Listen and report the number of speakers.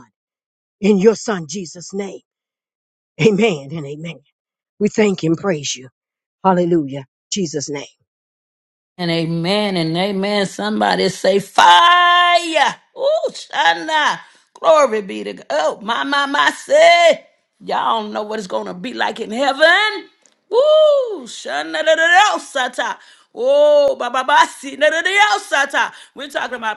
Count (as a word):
two